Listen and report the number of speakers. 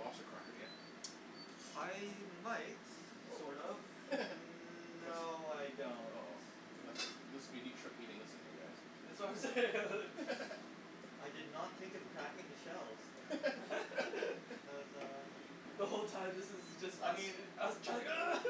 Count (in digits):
3